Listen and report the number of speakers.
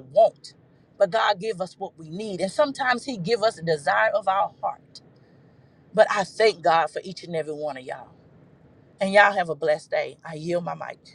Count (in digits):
1